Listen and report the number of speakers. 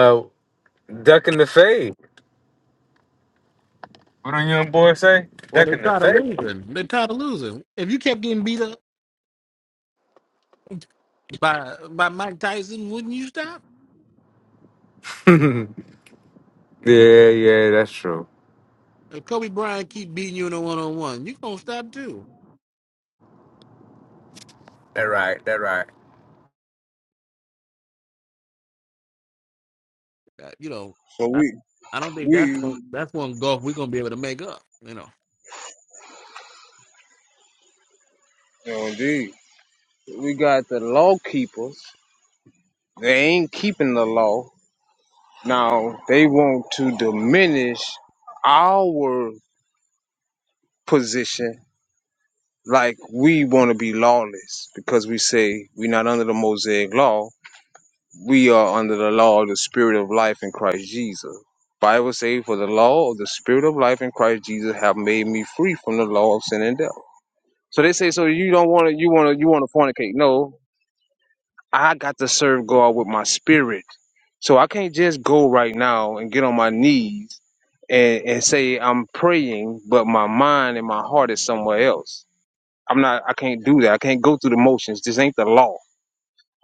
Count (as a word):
three